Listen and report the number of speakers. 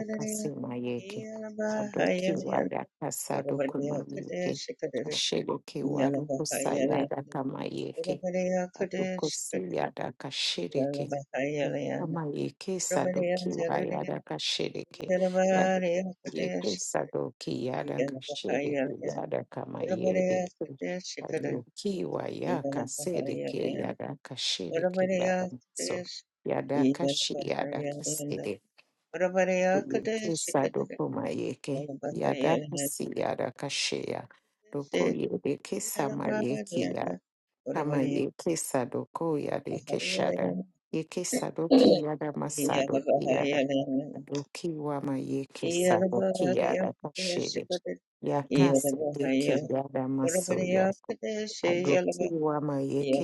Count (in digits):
2